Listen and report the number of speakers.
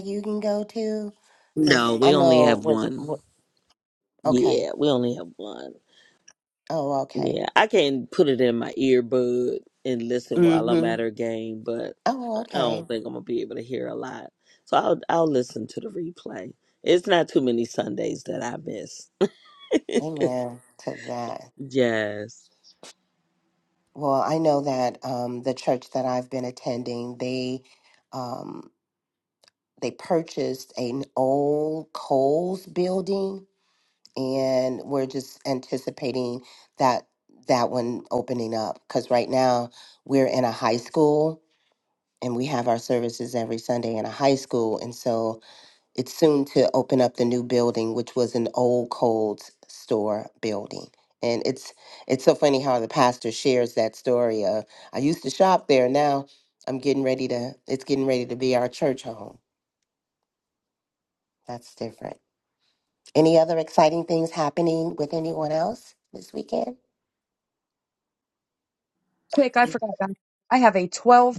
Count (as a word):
three